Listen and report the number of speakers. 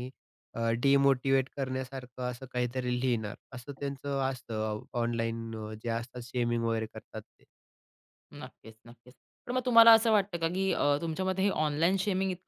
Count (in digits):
2